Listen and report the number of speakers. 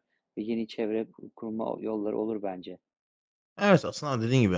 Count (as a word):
two